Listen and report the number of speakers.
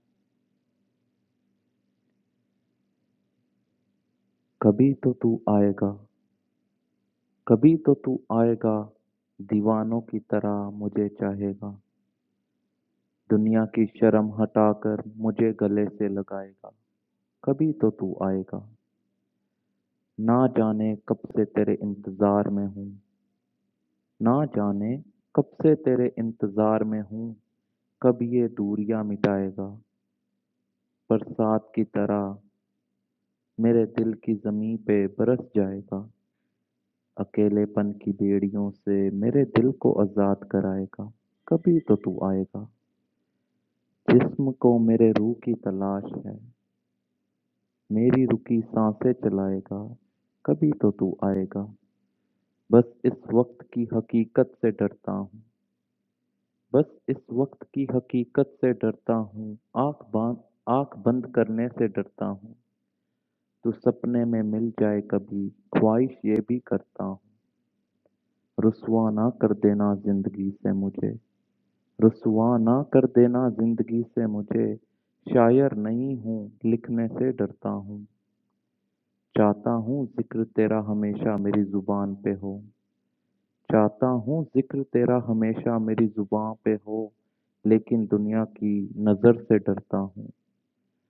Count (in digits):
1